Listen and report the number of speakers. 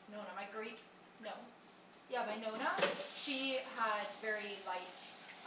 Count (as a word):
one